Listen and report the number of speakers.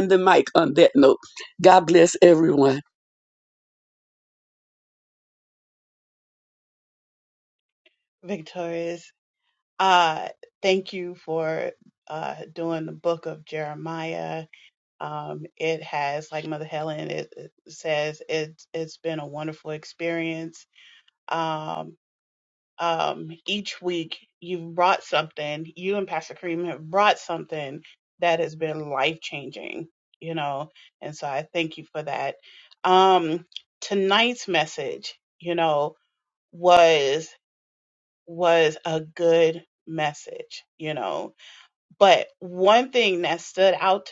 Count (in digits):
2